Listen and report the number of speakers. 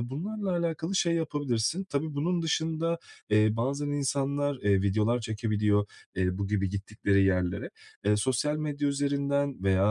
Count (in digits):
1